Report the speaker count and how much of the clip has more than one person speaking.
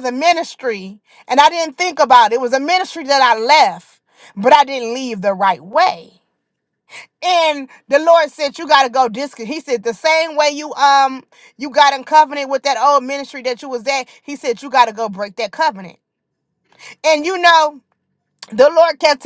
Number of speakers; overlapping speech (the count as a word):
one, no overlap